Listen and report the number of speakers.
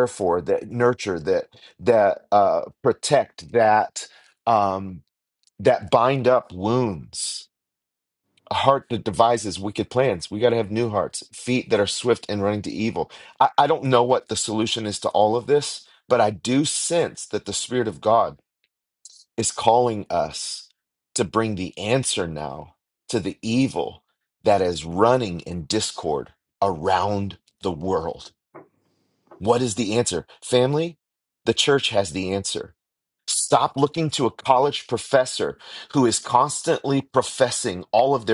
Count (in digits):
1